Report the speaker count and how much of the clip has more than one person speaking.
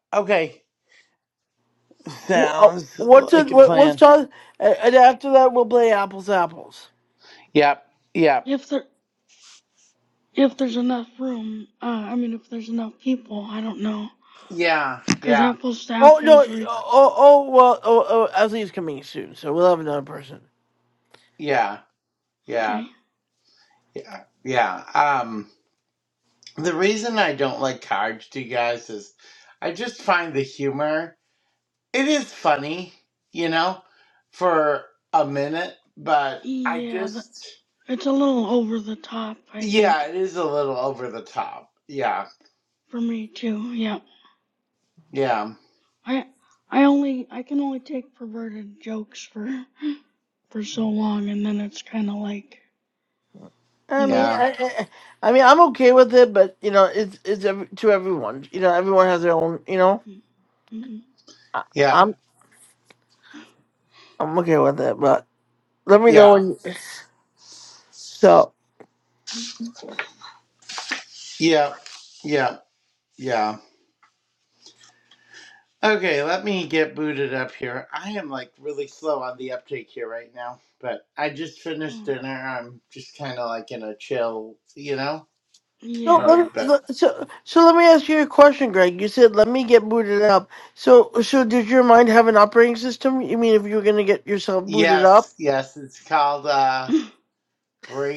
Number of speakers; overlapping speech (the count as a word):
three, about 7%